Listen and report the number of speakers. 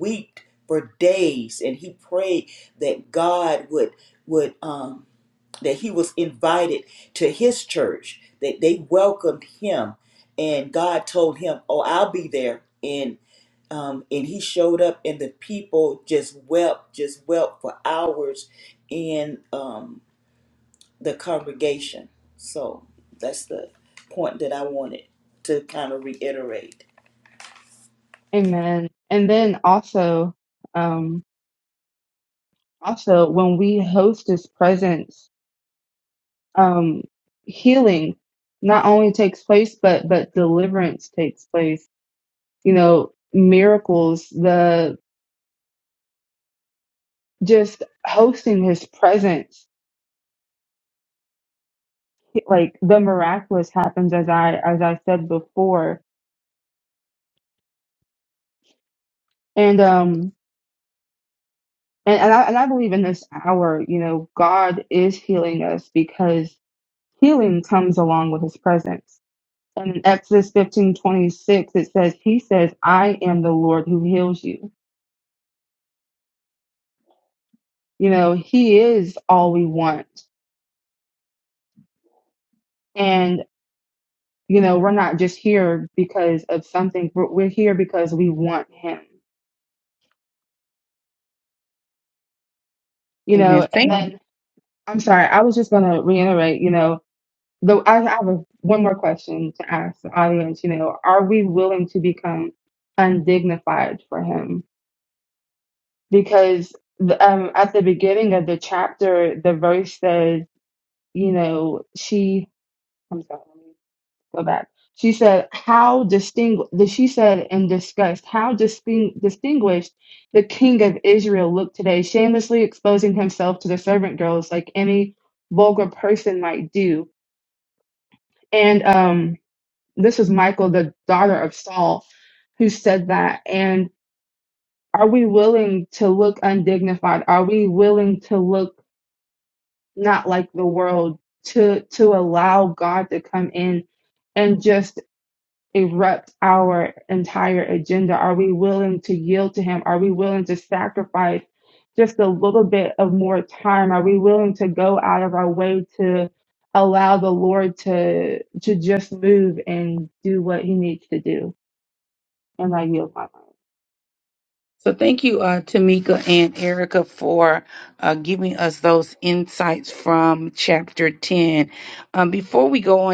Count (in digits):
3